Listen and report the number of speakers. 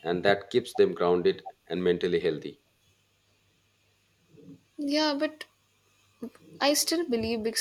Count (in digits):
2